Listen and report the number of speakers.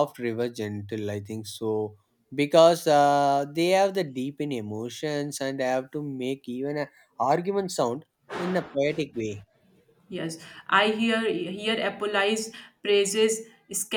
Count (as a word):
two